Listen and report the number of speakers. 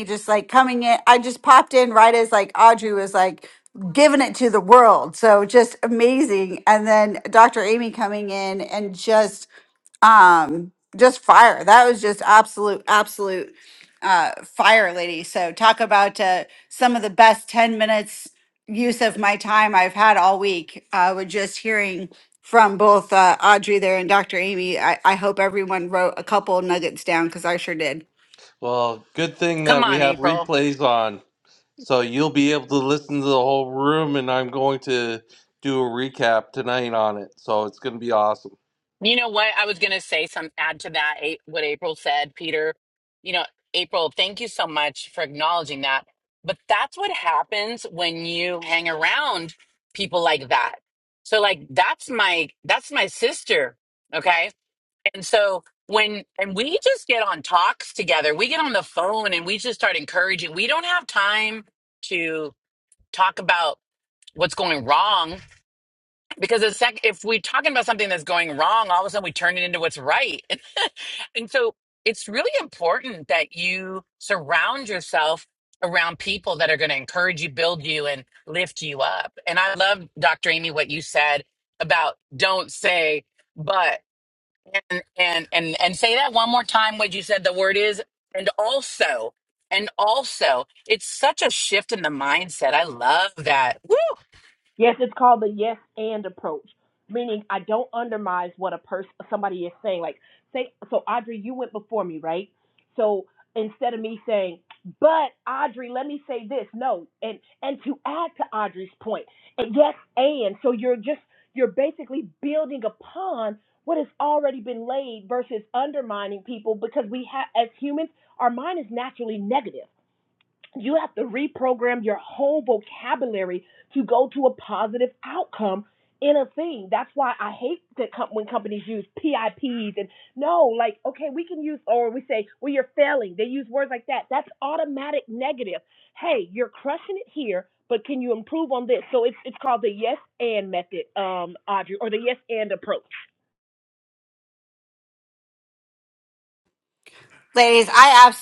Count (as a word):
four